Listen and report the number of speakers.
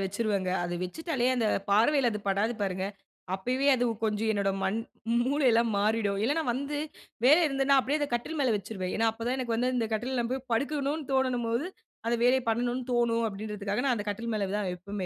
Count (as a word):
one